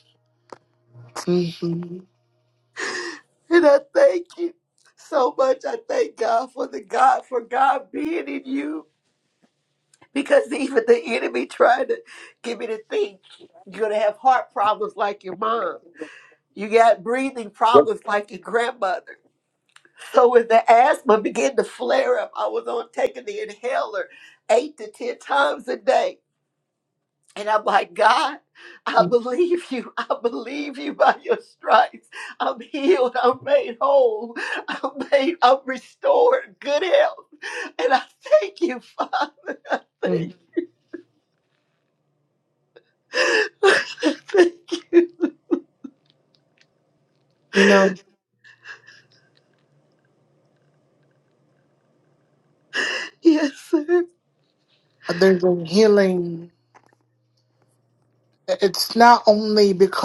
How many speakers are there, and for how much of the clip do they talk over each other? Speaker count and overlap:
2, about 1%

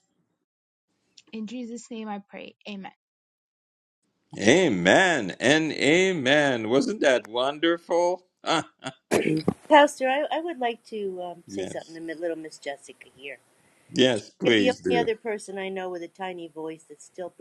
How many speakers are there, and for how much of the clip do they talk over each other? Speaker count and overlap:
3, about 7%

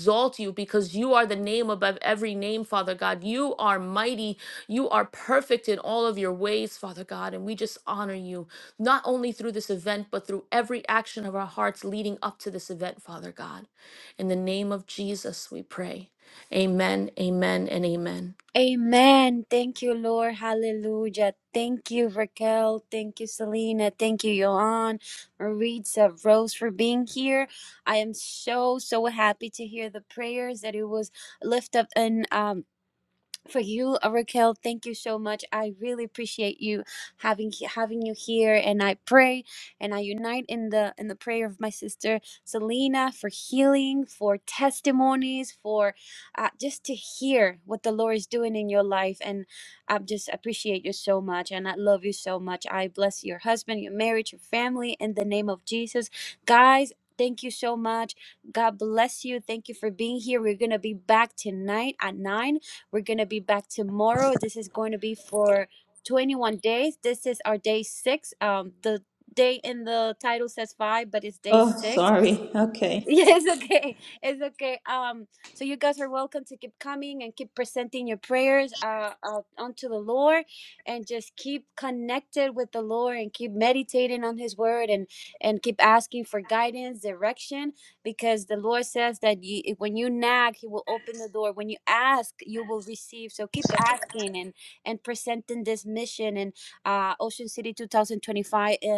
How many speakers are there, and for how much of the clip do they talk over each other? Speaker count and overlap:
3, about 1%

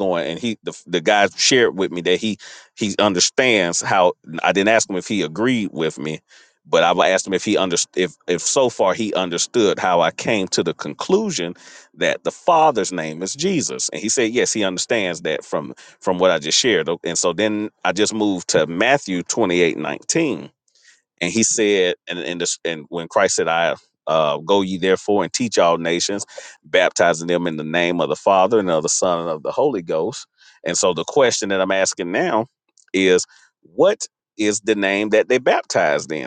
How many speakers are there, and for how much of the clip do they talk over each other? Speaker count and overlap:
1, no overlap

